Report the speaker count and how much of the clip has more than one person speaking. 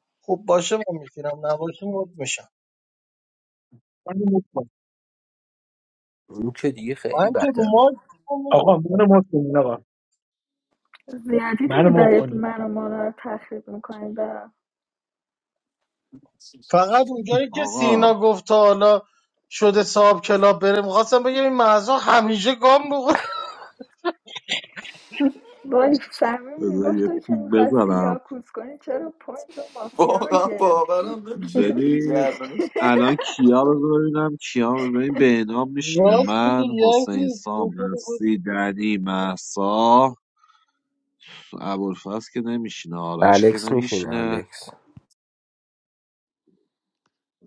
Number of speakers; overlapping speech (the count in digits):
6, about 18%